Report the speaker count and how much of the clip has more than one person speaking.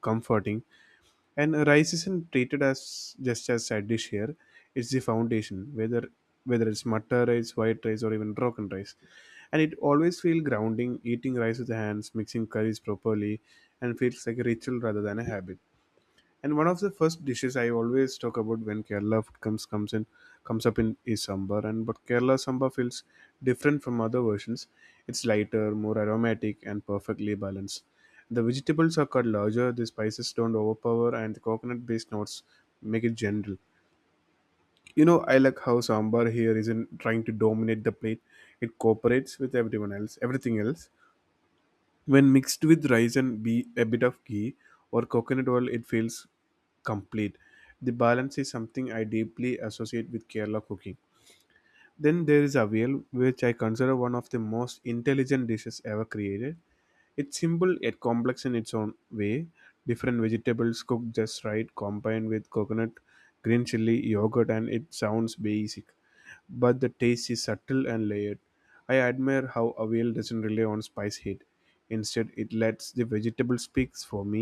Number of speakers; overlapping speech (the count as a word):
one, no overlap